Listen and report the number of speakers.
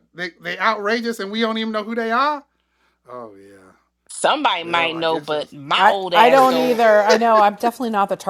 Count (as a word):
three